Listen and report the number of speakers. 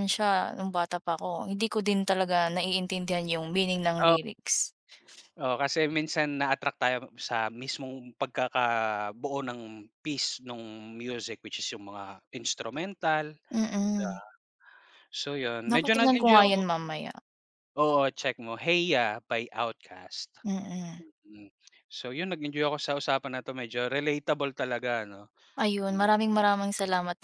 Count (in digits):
2